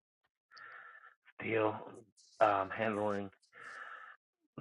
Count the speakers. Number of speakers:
1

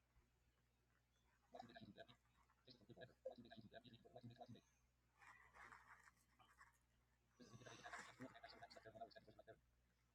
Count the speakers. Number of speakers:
0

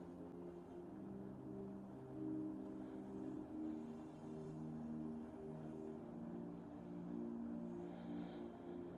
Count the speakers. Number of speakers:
0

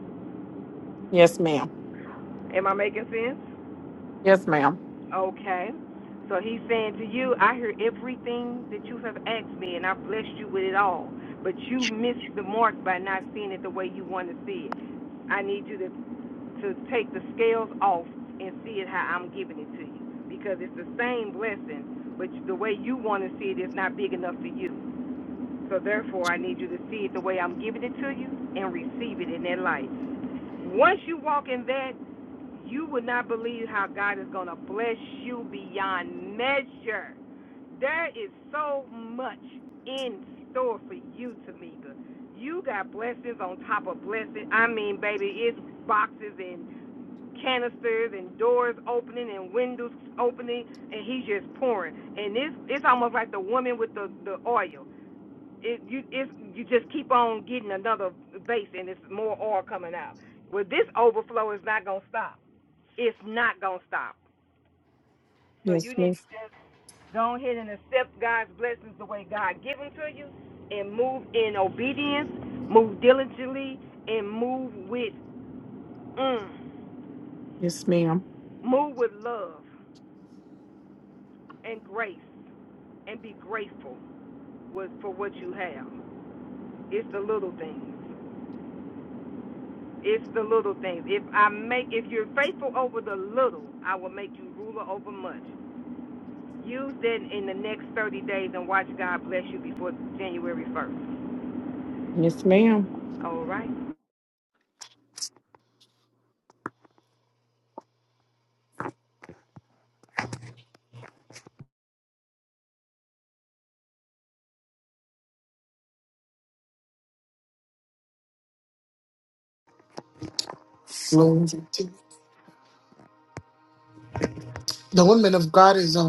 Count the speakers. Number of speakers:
3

